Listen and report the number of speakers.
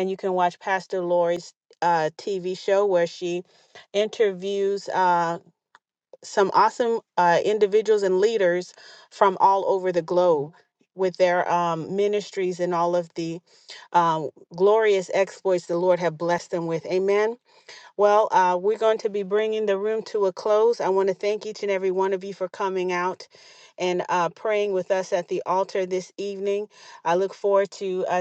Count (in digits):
1